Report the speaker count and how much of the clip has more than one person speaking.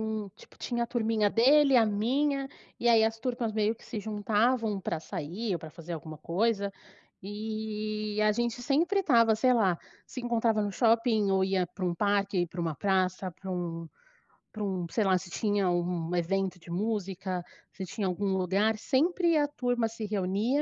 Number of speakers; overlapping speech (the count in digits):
1, no overlap